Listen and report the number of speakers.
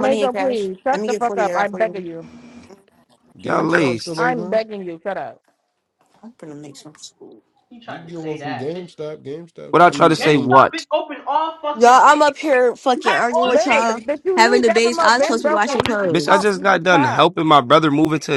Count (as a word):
six